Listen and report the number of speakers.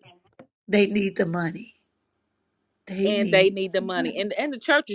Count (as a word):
two